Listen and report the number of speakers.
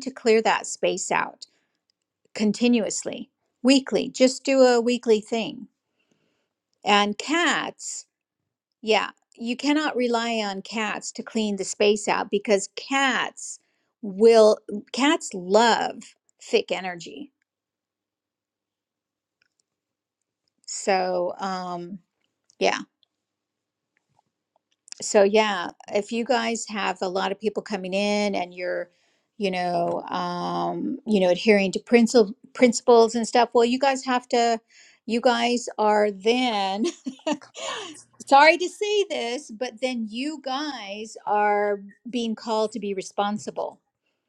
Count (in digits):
1